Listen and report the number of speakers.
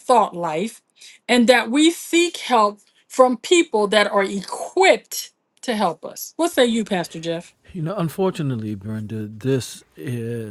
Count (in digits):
2